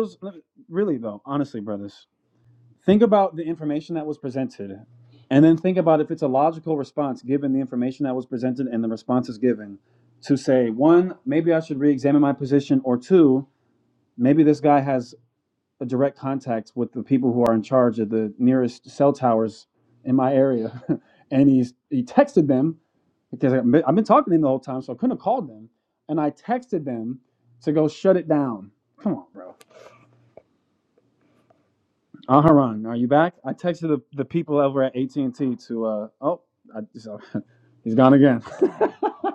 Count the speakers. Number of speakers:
1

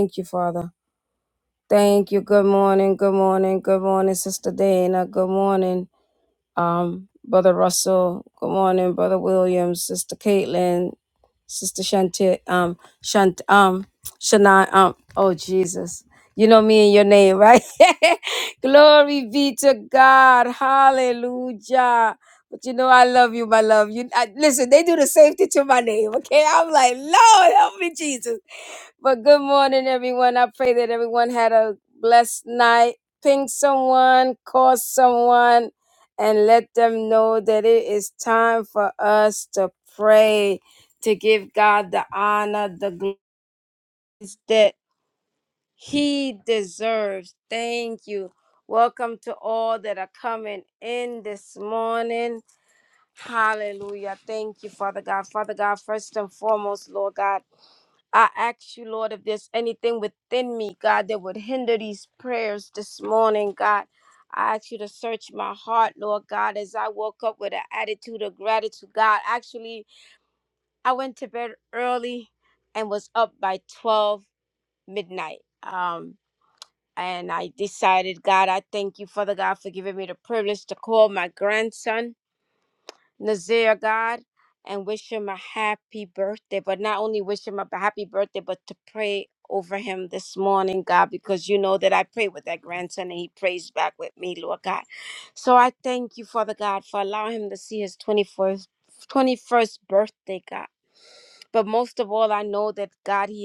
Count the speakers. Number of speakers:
1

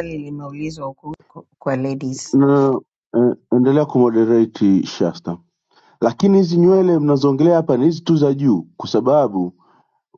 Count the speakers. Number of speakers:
2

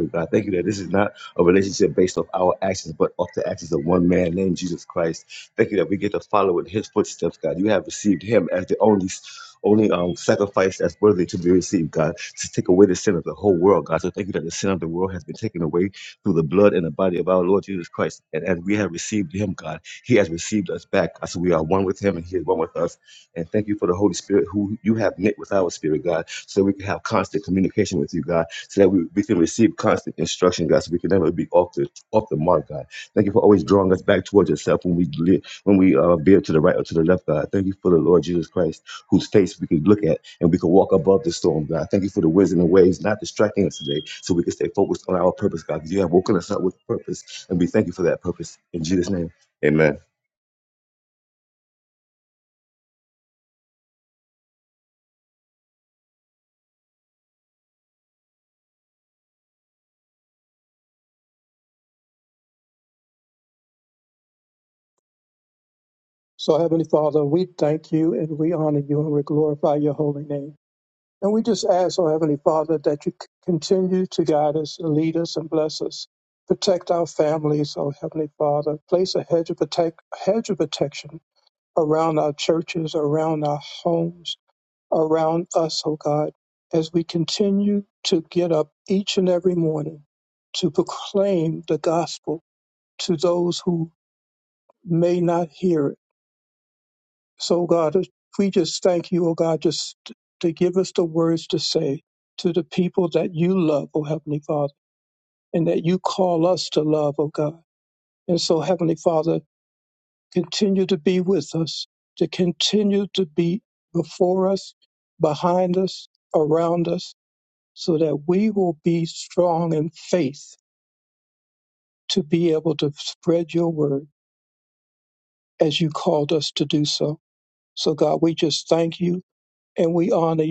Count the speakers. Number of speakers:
2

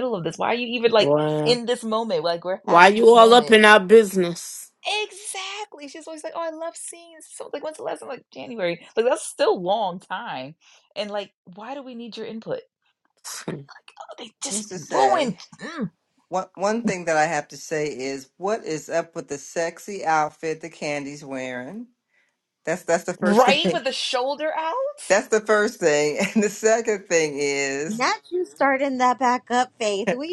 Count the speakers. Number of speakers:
4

